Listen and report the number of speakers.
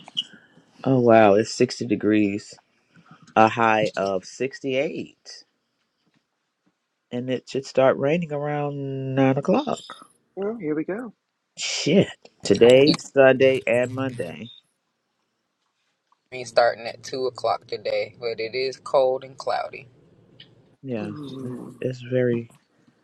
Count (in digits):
3